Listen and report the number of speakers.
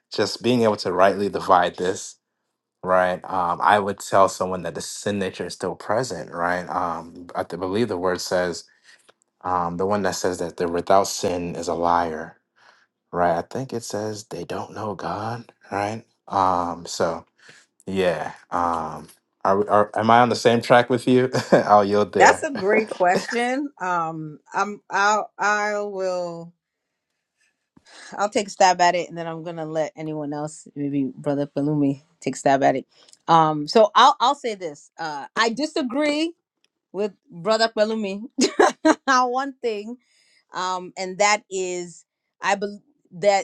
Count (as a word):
two